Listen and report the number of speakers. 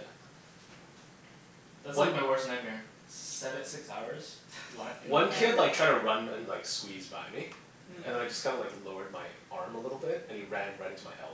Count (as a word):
two